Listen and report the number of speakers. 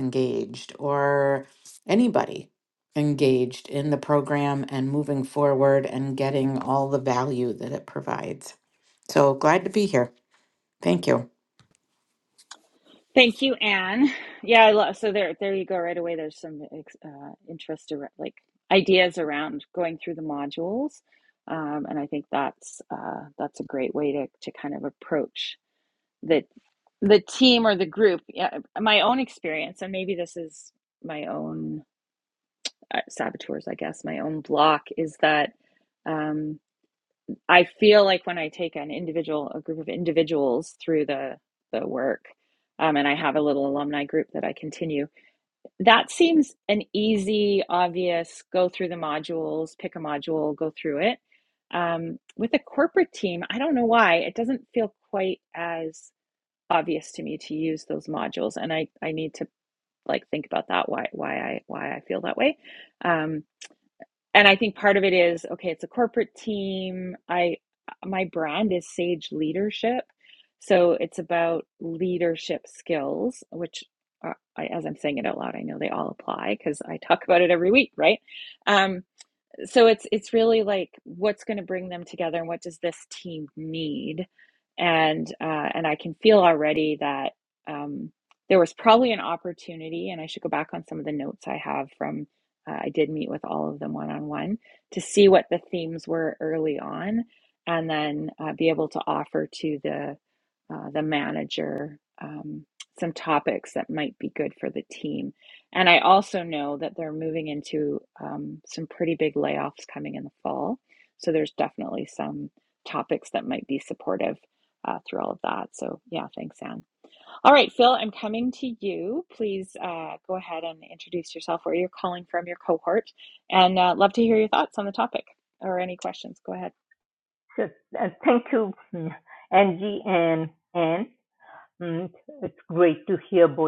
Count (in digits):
3